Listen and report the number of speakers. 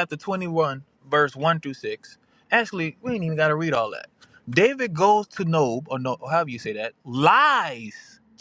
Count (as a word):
one